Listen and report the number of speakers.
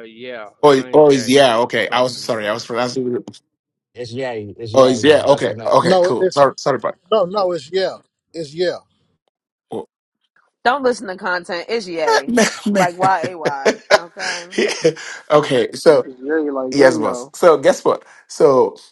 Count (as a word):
six